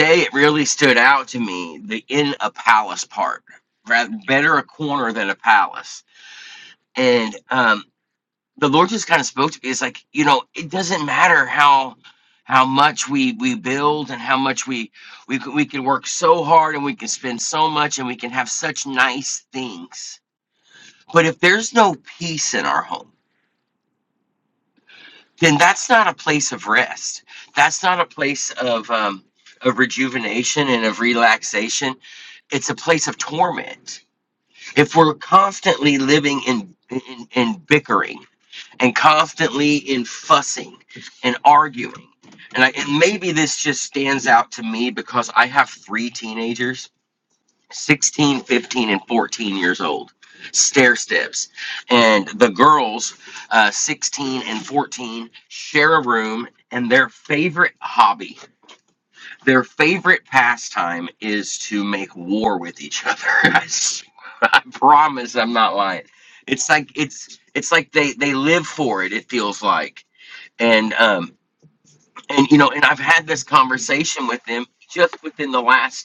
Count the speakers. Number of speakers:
one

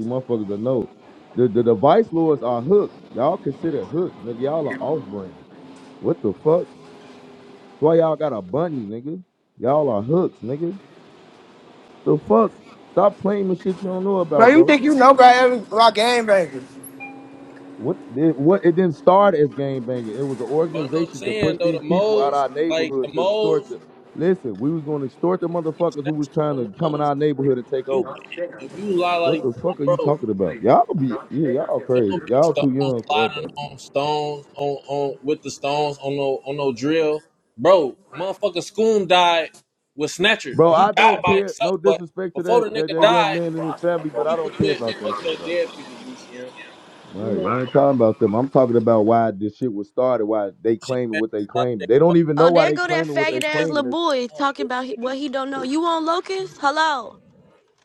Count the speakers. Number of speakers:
four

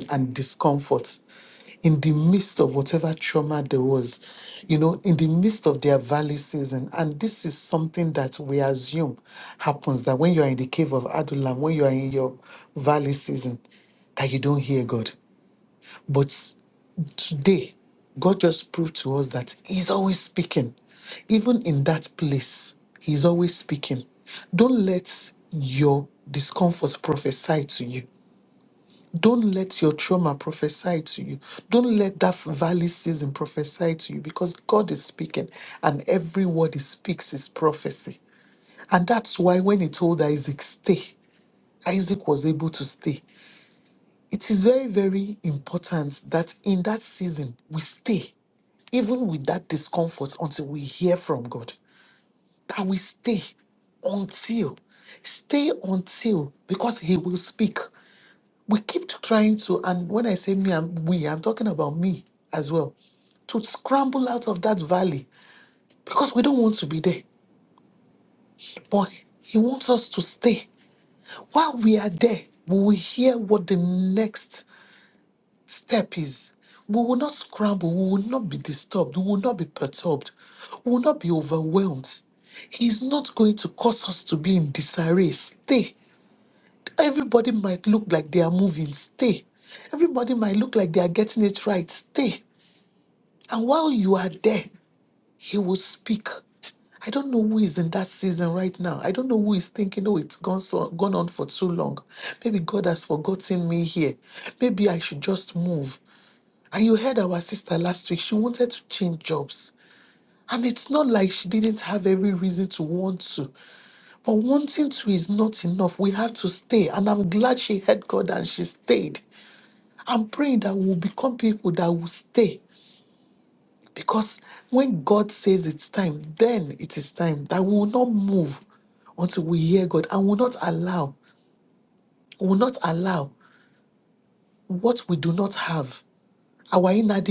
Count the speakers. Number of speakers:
one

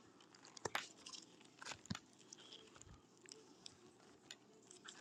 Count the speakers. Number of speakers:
zero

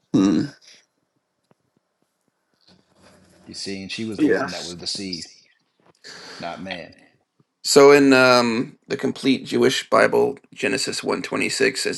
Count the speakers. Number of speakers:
two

